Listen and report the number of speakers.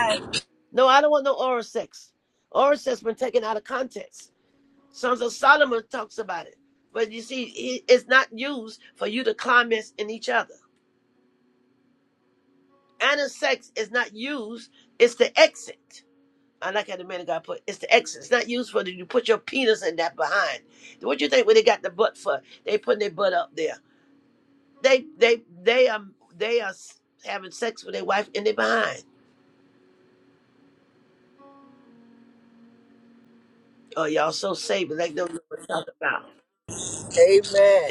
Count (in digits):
2